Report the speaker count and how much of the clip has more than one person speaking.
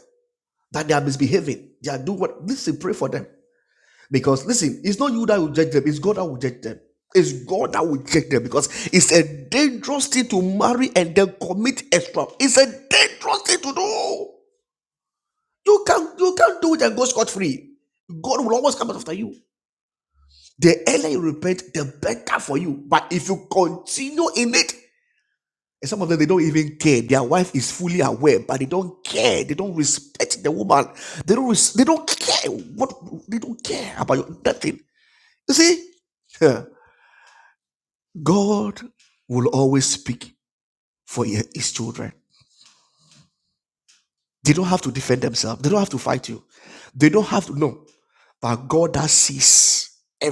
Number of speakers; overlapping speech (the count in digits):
1, no overlap